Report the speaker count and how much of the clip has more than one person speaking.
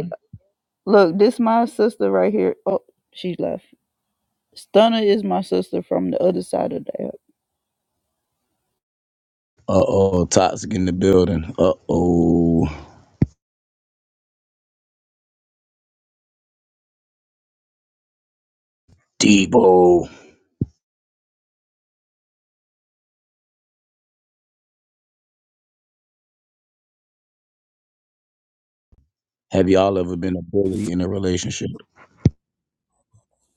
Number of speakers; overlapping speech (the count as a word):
two, under 1%